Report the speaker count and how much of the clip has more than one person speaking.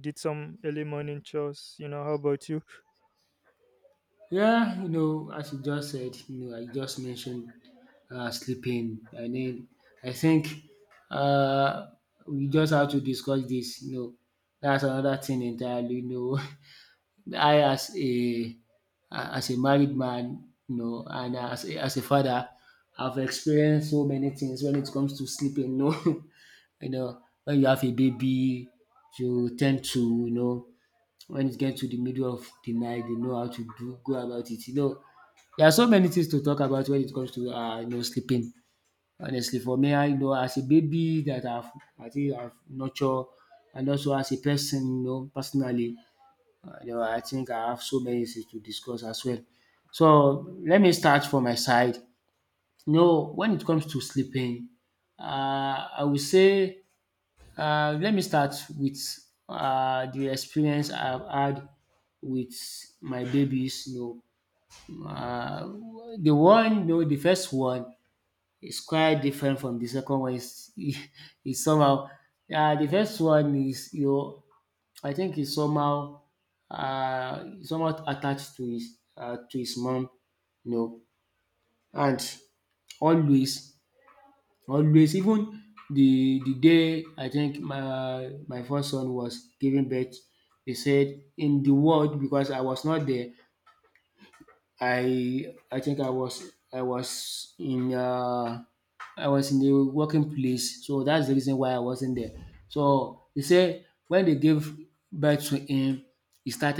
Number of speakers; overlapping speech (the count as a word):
two, no overlap